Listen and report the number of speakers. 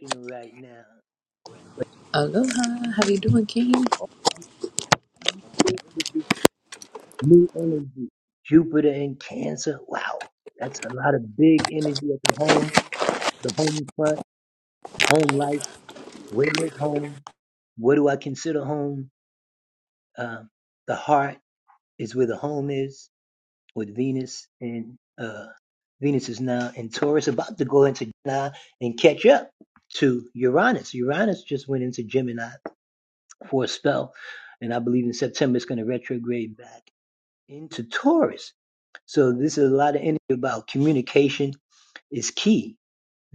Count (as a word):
two